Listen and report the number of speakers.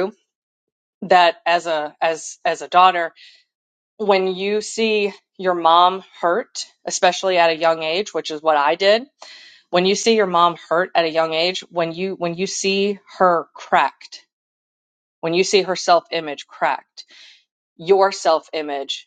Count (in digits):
1